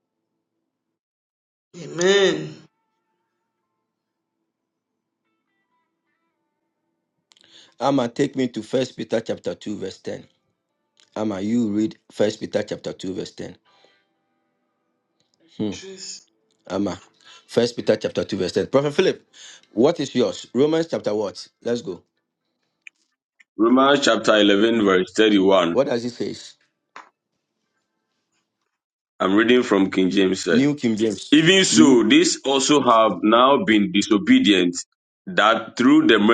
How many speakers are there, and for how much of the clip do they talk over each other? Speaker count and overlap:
three, about 1%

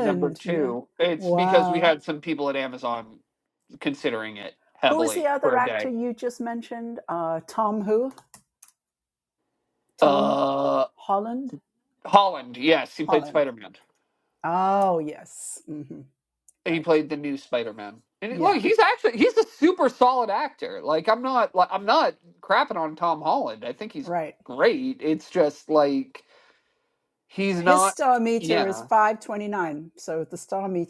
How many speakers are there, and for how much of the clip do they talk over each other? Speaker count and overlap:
two, about 14%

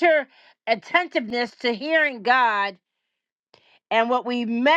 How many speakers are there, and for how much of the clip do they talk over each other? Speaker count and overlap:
one, no overlap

